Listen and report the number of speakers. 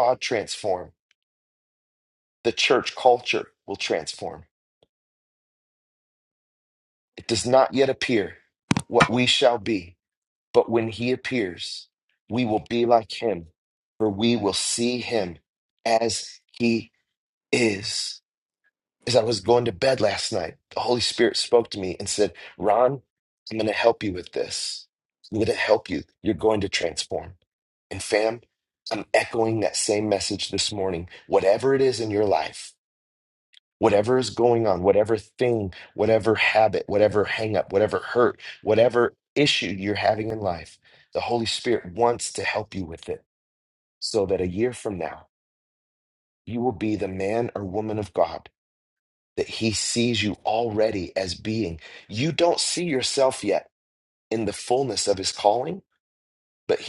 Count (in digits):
1